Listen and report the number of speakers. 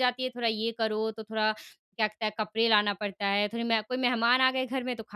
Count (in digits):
1